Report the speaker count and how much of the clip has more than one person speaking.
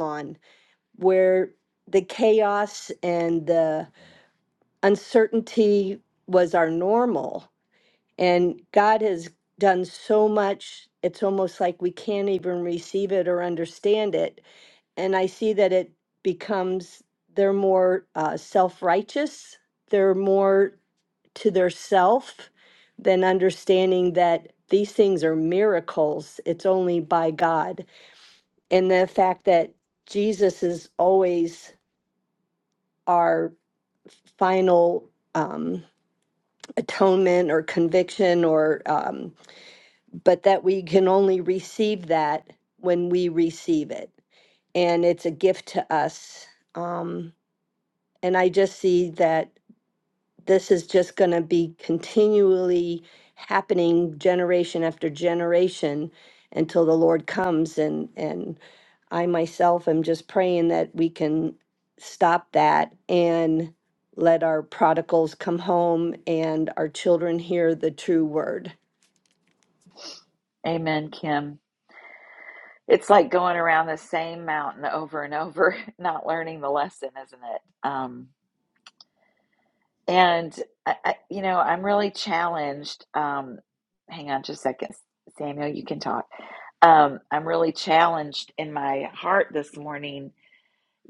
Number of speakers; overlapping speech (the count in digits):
2, no overlap